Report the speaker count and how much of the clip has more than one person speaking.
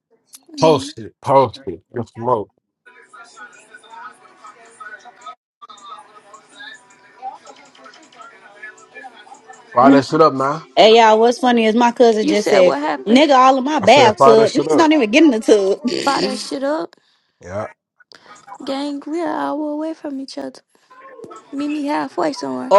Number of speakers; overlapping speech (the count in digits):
3, about 11%